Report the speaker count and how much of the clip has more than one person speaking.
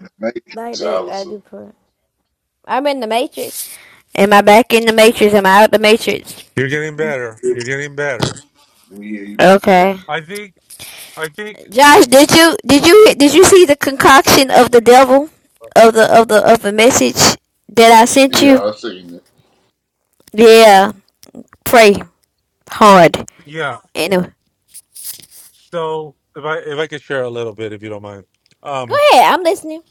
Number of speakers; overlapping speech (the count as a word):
three, about 5%